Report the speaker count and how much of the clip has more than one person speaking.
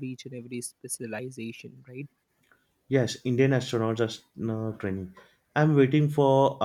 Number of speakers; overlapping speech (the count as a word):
two, no overlap